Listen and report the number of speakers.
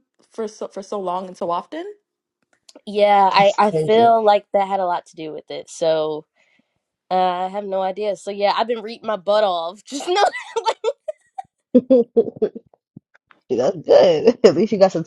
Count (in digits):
3